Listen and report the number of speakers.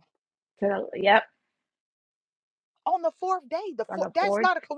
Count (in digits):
2